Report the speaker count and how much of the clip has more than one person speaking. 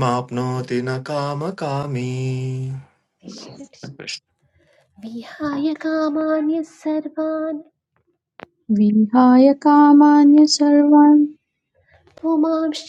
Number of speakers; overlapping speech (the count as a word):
three, no overlap